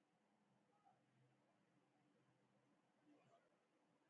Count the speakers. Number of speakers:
zero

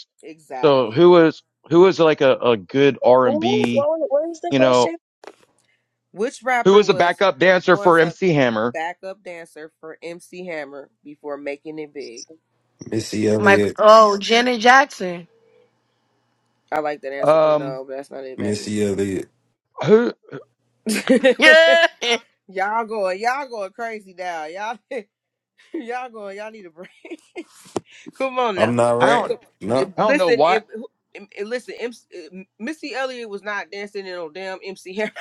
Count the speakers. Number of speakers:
five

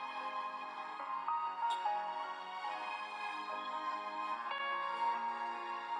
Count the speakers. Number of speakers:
zero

